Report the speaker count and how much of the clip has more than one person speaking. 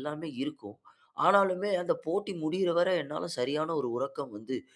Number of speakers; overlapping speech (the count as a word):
one, no overlap